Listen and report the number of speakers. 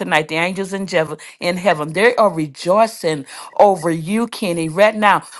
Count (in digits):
1